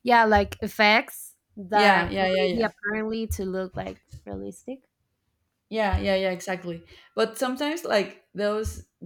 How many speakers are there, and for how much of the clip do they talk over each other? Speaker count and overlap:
2, about 11%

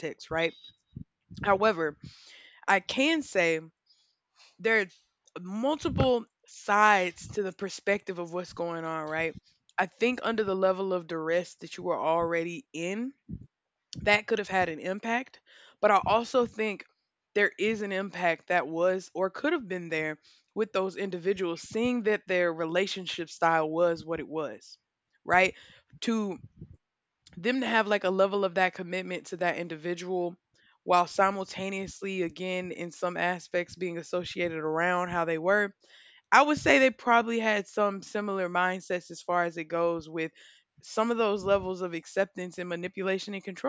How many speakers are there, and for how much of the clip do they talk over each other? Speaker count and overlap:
1, no overlap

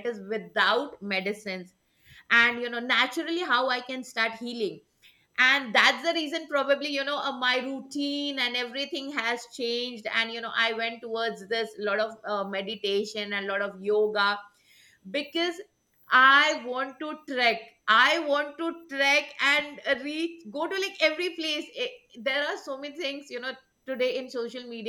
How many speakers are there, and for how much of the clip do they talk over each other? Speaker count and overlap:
1, no overlap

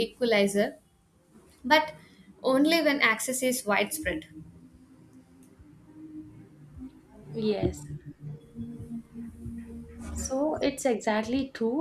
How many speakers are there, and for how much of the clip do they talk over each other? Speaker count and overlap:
2, no overlap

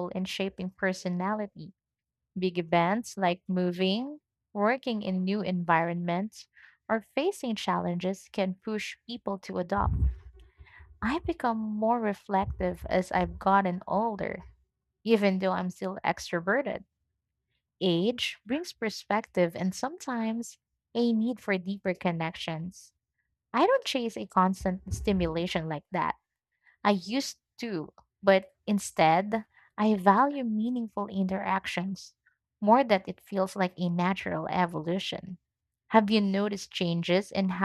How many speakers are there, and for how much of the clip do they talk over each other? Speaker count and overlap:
1, no overlap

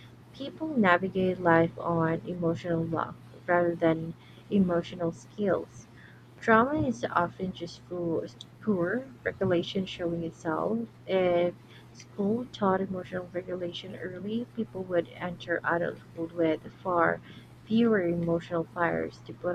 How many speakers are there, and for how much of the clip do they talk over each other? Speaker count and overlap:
1, no overlap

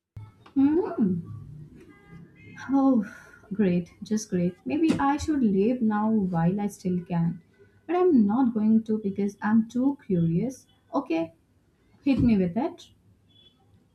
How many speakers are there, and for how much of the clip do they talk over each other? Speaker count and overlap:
1, no overlap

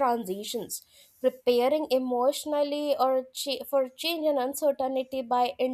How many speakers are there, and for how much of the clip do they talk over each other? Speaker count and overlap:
1, no overlap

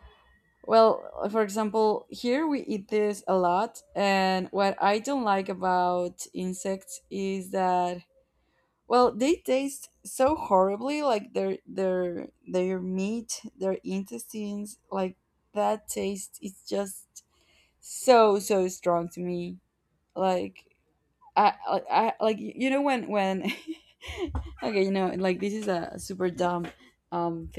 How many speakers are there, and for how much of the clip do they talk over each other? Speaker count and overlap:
1, no overlap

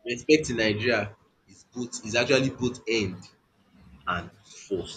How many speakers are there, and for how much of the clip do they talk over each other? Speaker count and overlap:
1, no overlap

